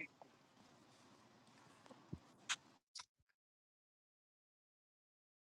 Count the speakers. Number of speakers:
0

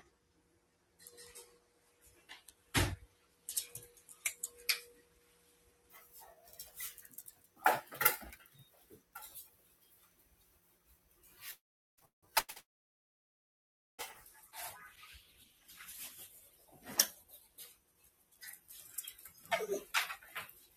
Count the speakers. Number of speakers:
0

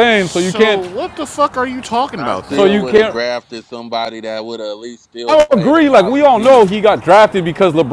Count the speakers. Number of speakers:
3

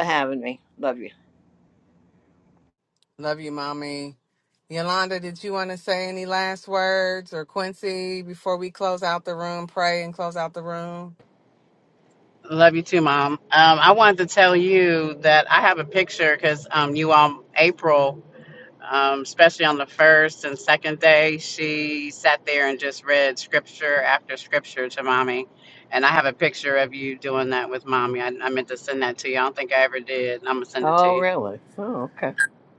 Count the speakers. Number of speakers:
3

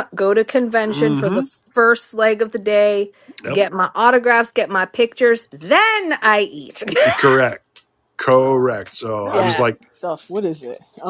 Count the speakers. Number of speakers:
3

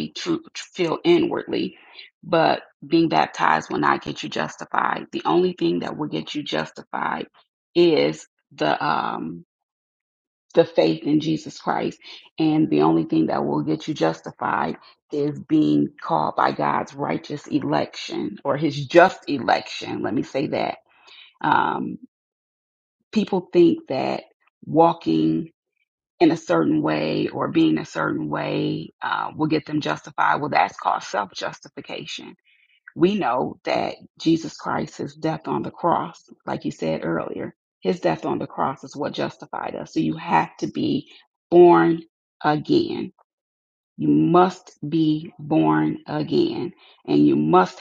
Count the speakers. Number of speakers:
1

